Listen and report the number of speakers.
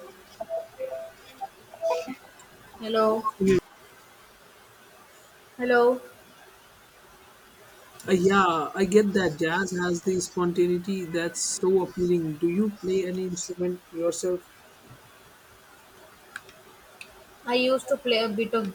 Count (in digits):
2